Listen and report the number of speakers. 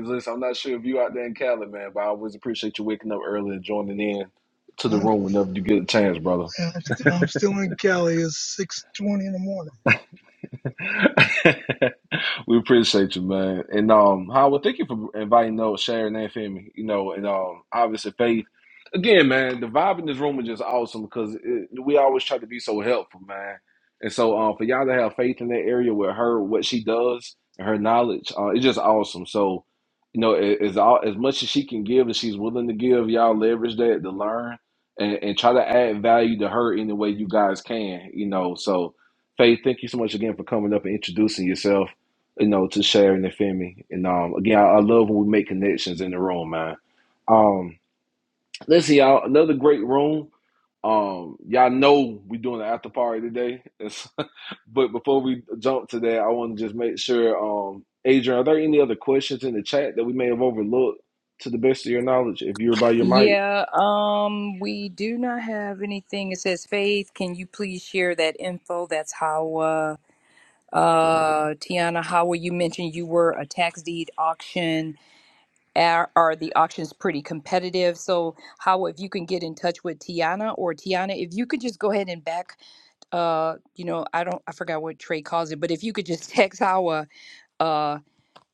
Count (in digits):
3